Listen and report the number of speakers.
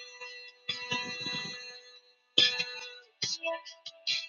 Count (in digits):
0